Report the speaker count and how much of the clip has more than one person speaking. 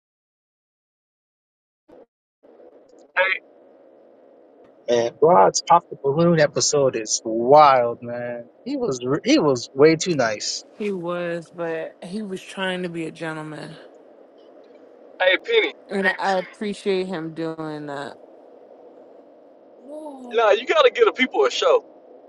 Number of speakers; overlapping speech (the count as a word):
three, no overlap